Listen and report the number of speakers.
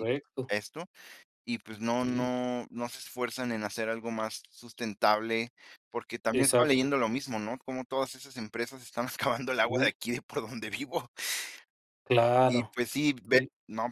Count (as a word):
two